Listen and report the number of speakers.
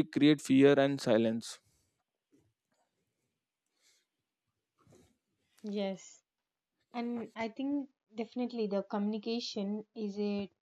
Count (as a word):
two